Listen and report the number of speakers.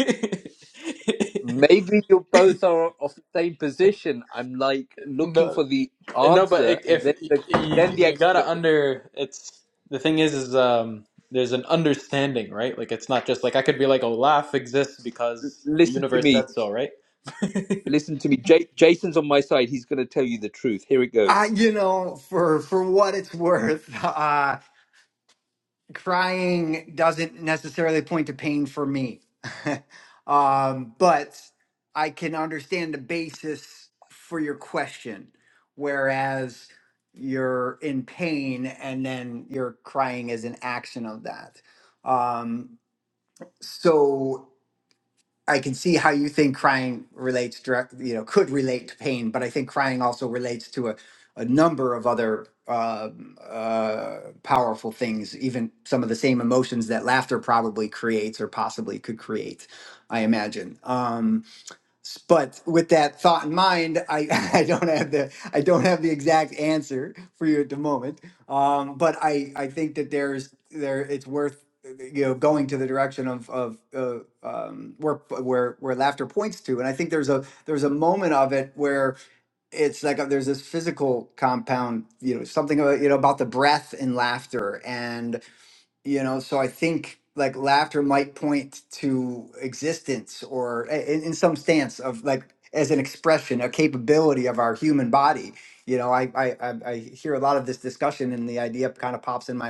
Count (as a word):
three